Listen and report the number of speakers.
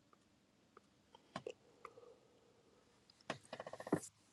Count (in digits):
0